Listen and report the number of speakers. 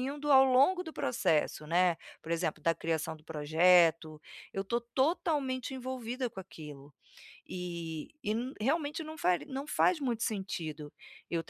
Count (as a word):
one